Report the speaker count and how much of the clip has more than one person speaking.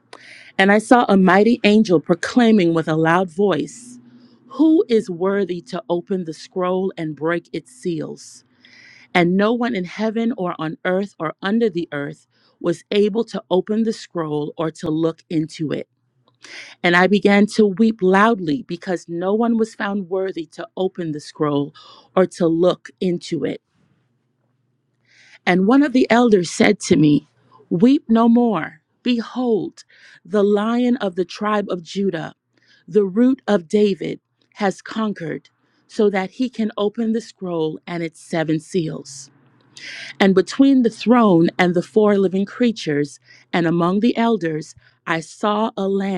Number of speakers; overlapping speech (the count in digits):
1, no overlap